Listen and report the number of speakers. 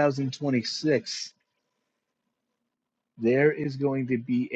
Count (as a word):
one